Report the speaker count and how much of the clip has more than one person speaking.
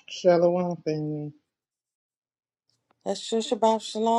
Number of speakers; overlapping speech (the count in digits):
2, no overlap